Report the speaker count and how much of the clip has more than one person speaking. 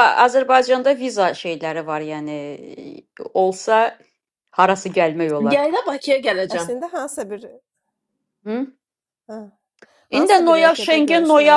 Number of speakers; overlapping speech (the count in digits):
3, about 15%